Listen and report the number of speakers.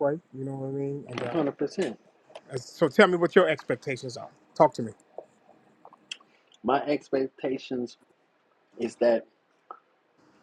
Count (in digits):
2